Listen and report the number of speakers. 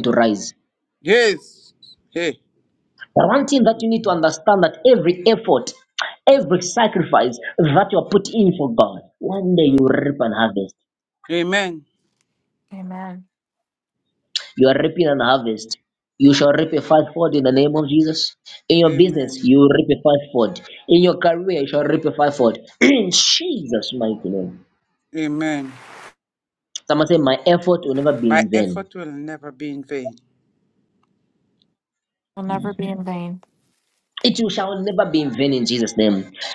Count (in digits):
3